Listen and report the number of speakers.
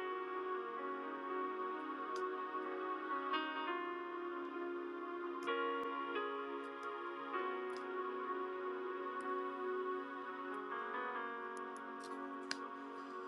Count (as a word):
zero